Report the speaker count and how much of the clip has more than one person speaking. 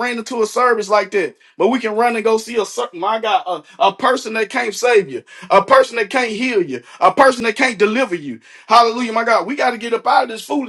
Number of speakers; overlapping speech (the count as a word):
one, no overlap